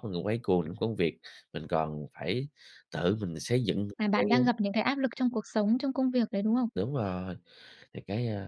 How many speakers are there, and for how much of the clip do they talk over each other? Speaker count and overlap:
2, about 4%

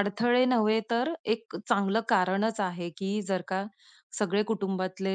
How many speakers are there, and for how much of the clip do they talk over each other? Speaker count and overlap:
1, no overlap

